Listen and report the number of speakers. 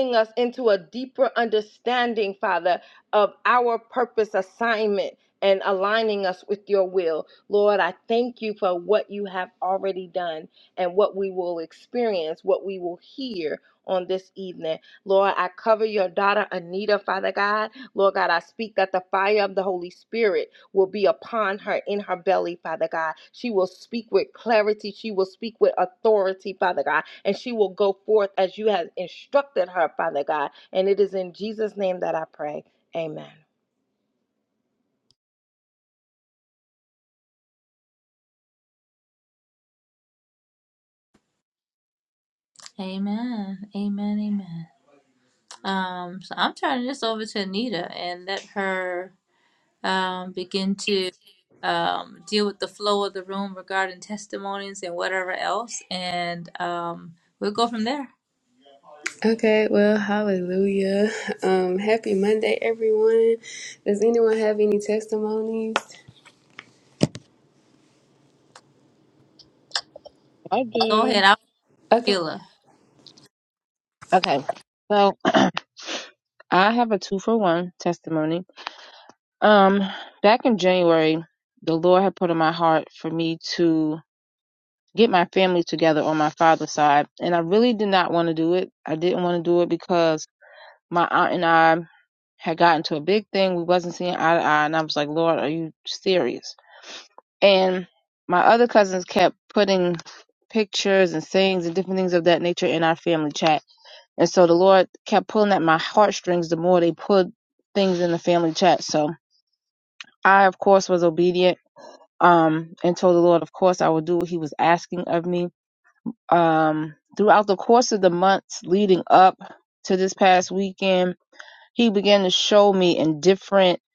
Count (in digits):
4